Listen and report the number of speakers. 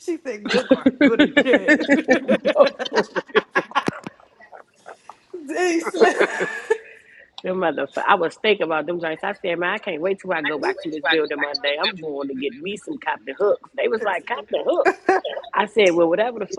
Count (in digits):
2